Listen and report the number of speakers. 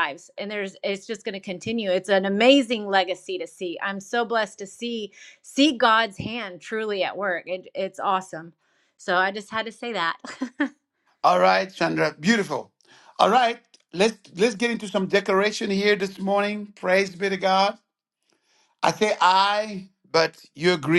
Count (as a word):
two